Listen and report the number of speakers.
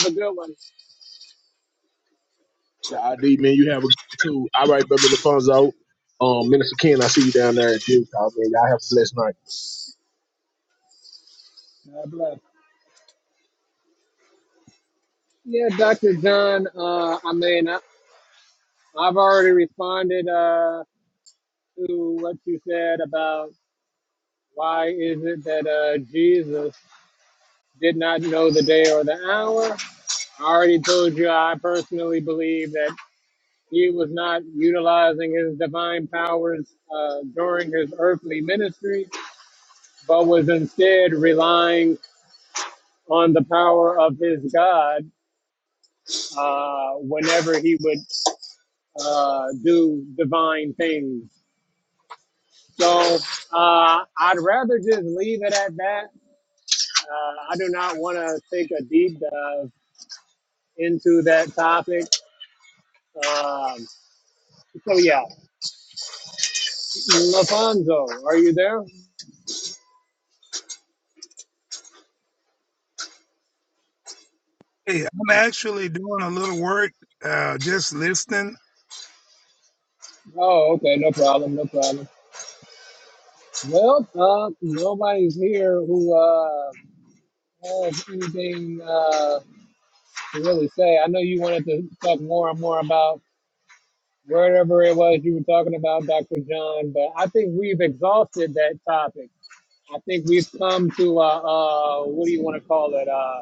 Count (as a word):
three